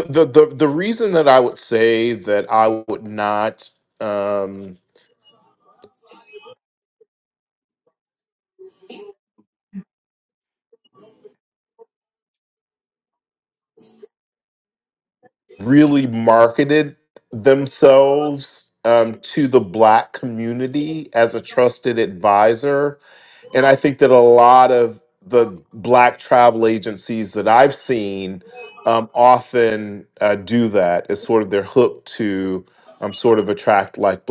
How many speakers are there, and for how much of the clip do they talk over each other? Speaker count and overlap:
1, no overlap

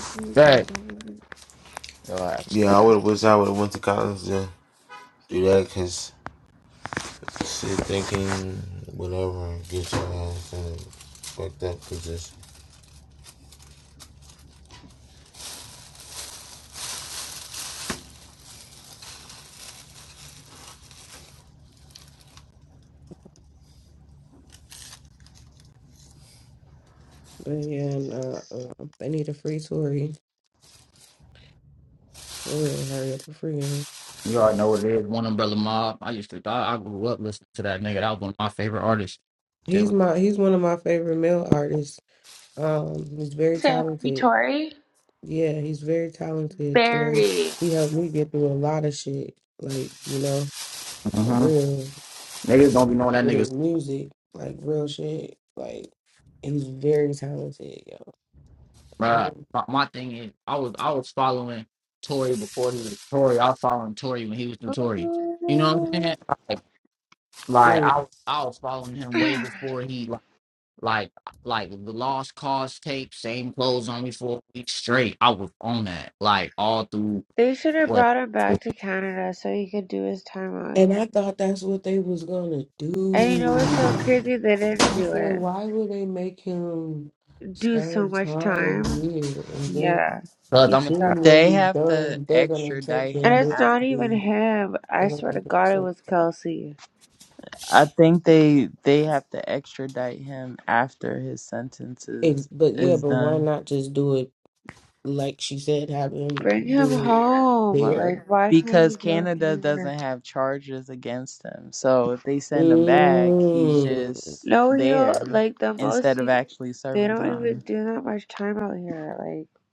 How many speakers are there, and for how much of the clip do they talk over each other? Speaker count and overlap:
5, about 15%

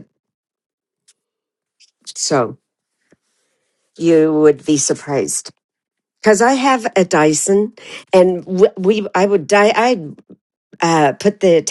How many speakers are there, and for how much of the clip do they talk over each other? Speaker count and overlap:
1, no overlap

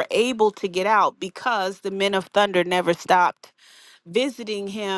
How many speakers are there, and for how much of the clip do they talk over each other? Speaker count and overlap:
1, no overlap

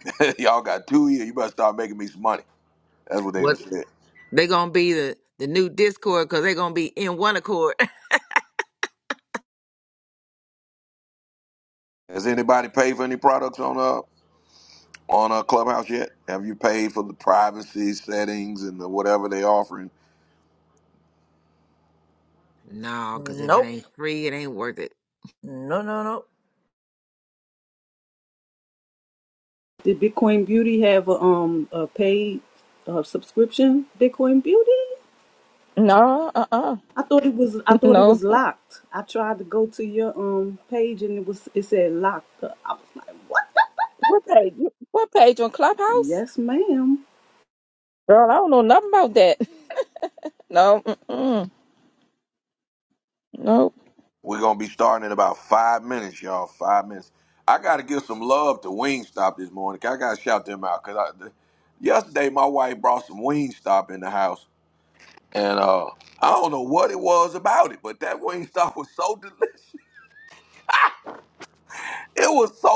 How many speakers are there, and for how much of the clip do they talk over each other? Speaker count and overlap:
5, about 2%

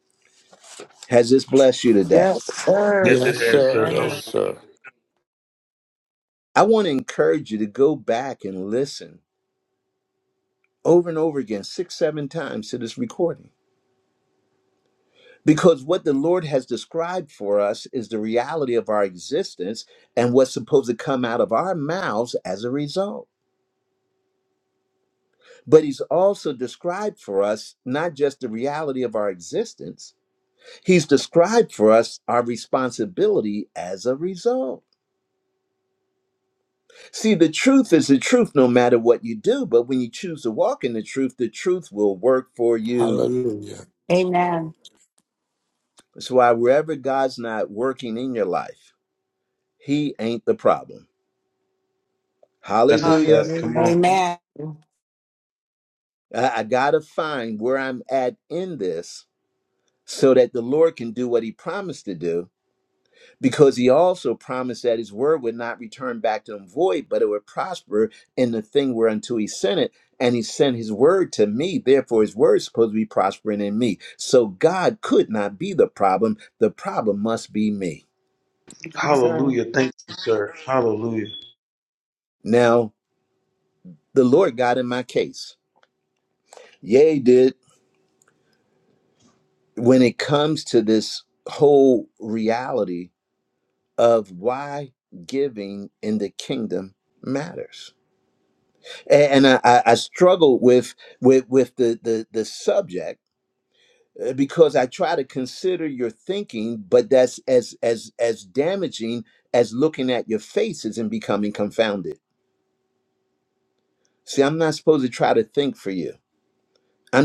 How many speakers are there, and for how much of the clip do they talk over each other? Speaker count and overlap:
5, about 3%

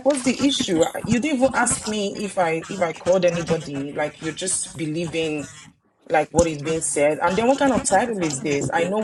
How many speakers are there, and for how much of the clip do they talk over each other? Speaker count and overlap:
1, no overlap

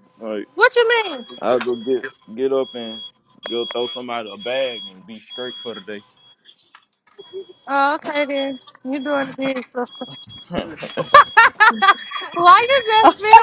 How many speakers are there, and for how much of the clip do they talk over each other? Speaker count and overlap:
2, no overlap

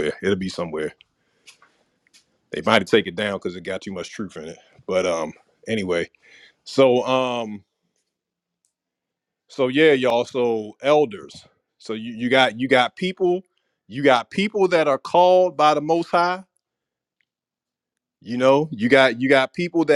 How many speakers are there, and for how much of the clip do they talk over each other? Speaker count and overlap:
1, no overlap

